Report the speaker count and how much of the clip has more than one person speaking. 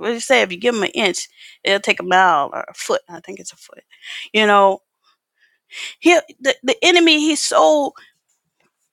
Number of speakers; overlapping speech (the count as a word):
one, no overlap